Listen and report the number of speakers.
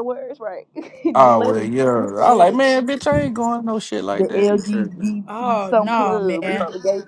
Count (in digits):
3